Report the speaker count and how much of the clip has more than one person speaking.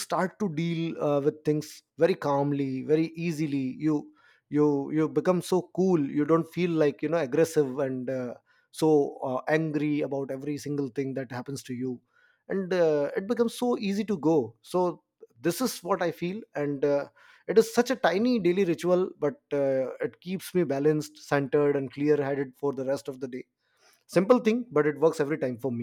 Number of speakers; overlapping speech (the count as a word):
one, no overlap